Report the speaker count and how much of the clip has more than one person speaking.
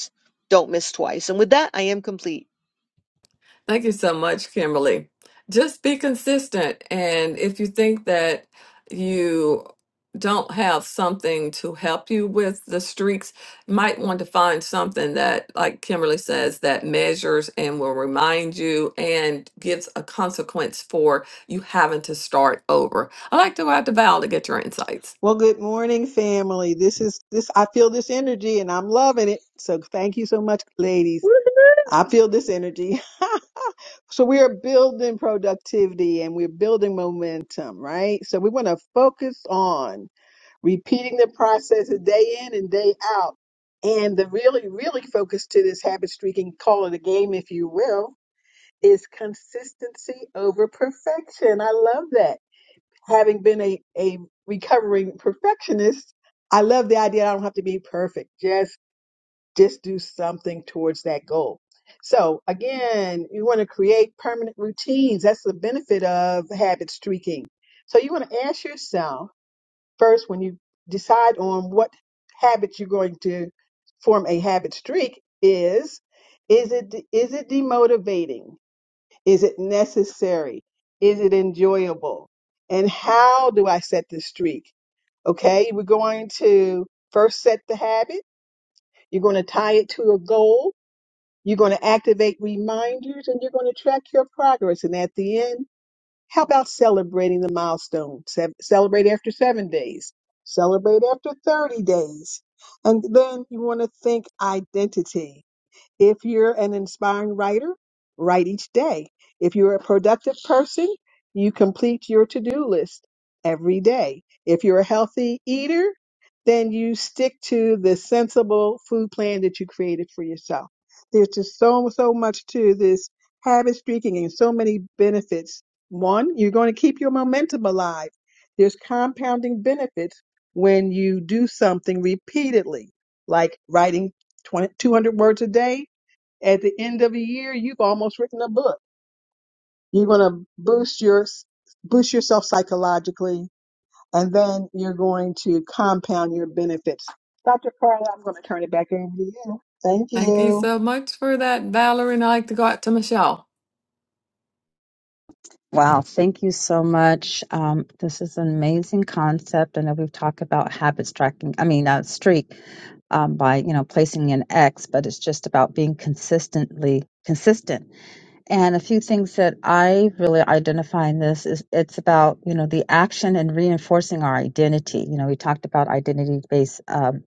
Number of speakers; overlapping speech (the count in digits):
4, under 1%